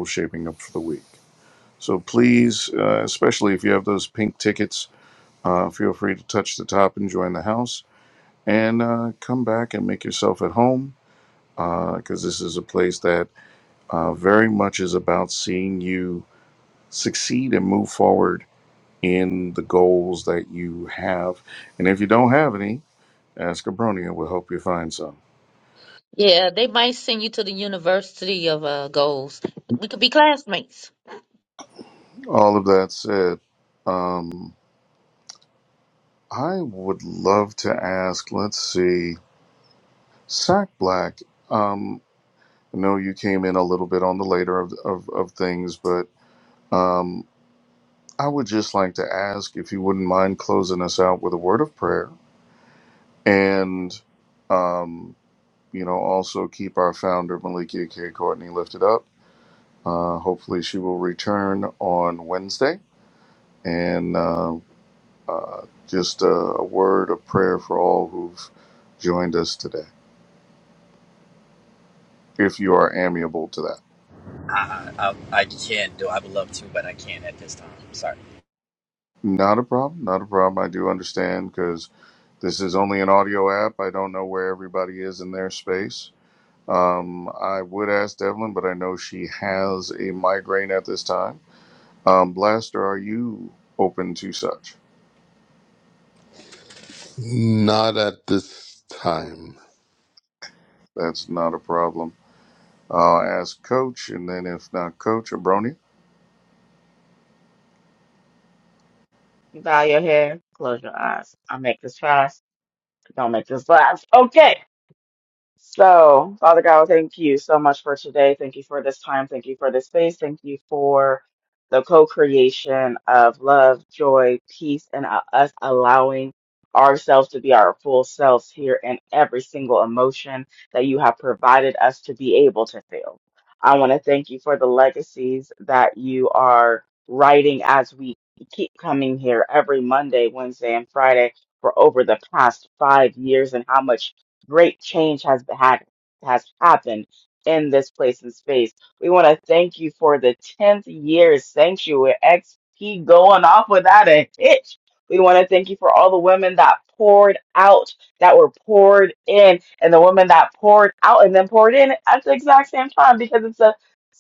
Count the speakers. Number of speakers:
five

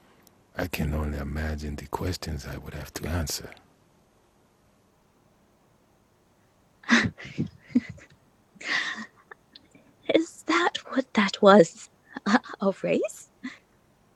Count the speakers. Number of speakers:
two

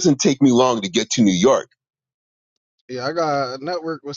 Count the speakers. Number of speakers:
two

